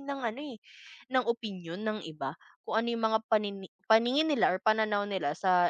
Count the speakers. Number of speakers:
one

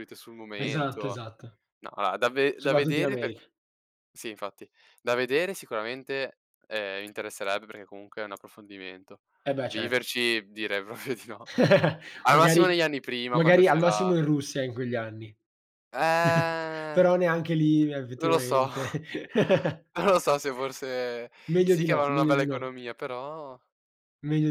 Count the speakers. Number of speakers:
two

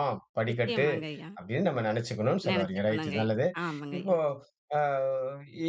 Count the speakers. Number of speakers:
two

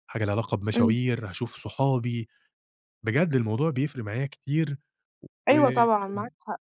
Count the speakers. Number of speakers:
two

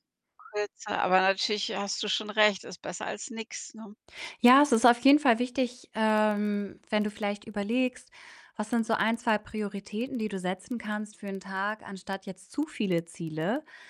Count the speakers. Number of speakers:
two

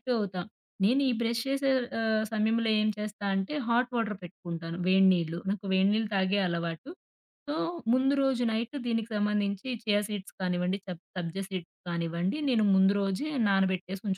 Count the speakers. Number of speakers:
one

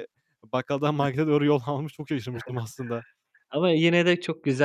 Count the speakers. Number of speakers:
two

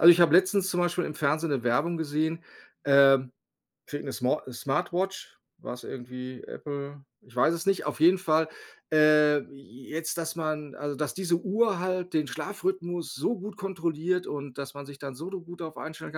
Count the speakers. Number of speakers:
one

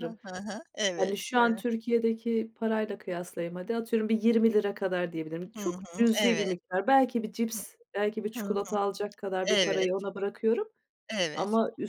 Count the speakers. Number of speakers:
two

